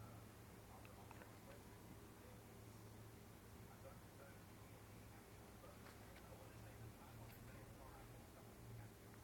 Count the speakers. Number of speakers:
0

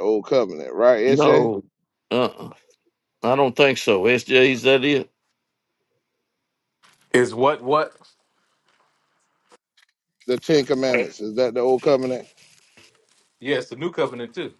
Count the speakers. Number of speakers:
3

